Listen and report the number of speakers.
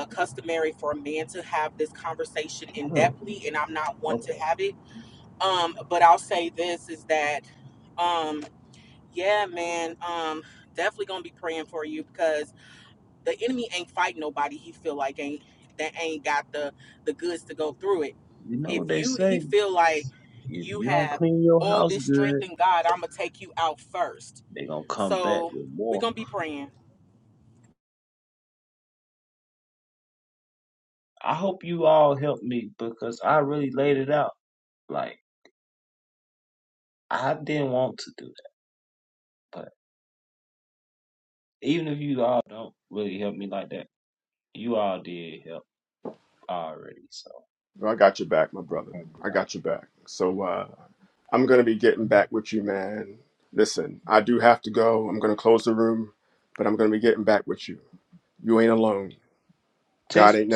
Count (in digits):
3